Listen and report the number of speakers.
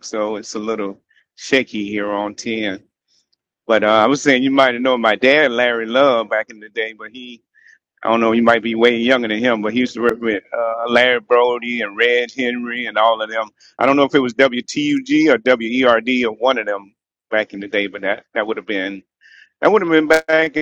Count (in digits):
1